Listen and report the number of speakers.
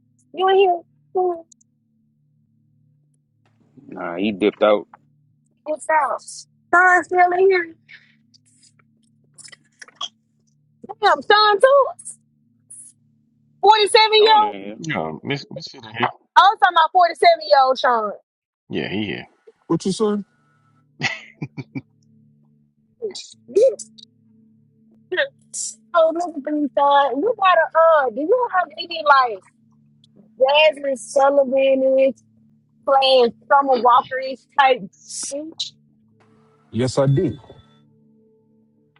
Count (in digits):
4